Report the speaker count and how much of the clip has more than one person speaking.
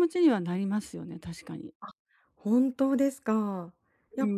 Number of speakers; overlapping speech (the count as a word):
two, about 5%